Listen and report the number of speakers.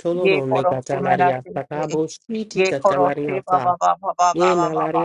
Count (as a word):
two